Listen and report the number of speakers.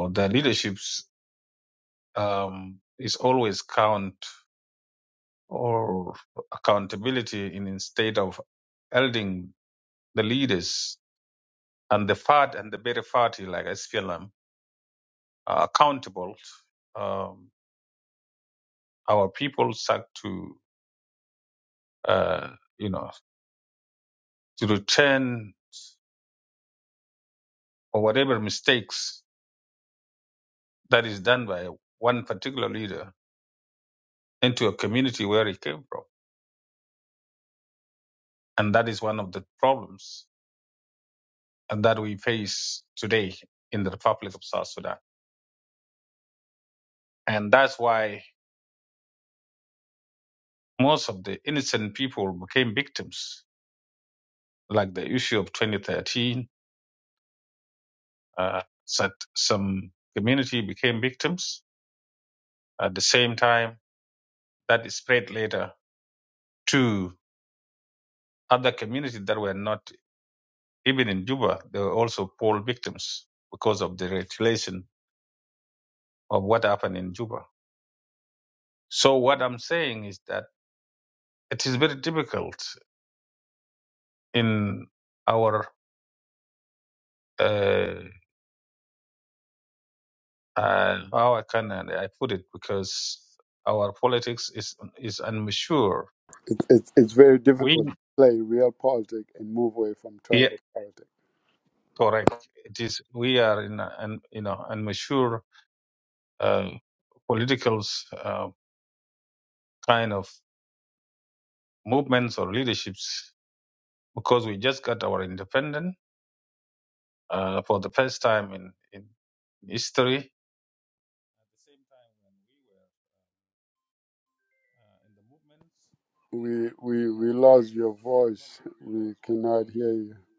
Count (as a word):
two